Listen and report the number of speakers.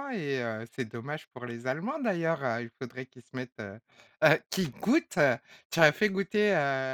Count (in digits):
1